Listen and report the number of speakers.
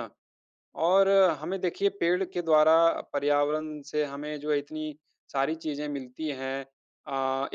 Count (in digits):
1